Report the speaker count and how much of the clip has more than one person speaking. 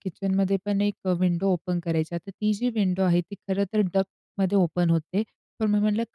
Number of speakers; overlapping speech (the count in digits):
1, no overlap